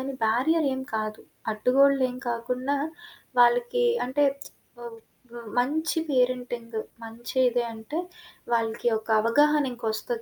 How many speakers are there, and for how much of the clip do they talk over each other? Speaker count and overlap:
1, no overlap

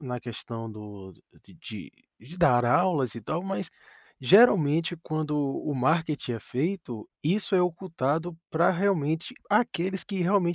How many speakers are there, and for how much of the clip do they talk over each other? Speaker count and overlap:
1, no overlap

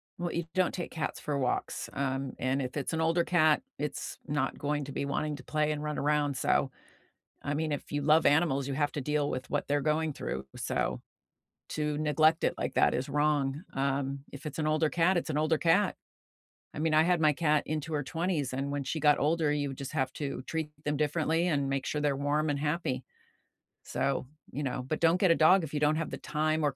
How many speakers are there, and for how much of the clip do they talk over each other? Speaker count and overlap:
1, no overlap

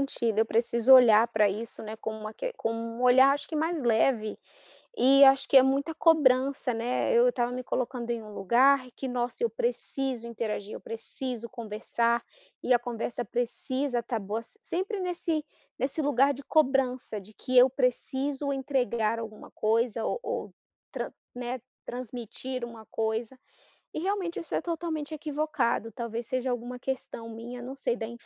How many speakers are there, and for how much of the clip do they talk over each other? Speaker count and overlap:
1, no overlap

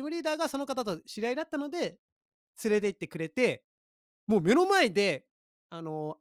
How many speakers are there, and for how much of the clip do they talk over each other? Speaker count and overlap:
1, no overlap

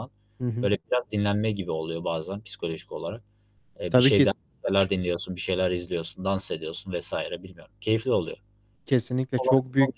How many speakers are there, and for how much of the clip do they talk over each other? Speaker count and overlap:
2, about 11%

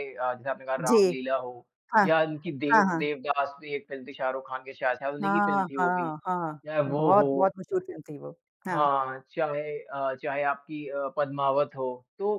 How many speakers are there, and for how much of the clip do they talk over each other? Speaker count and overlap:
2, about 23%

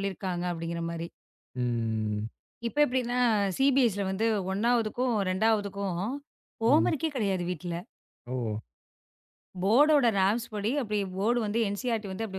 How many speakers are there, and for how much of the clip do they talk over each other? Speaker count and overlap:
2, about 2%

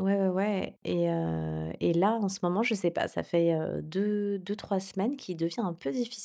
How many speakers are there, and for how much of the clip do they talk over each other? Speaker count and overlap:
1, no overlap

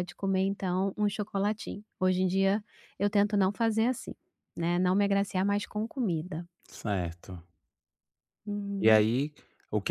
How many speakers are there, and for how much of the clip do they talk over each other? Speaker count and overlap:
2, about 2%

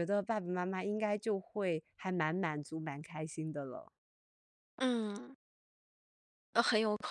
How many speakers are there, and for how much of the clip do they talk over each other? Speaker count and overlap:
2, no overlap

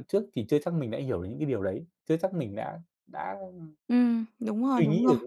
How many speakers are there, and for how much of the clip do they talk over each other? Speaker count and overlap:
2, about 9%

